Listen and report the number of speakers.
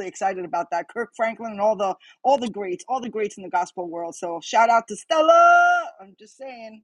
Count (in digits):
1